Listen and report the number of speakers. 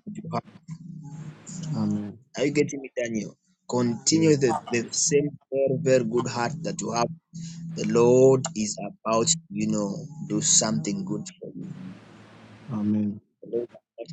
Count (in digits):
2